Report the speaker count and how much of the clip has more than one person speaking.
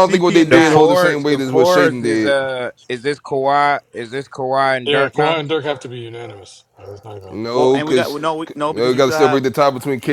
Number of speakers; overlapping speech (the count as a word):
four, about 42%